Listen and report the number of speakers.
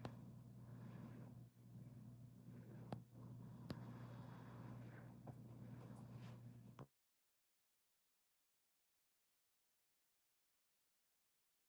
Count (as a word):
zero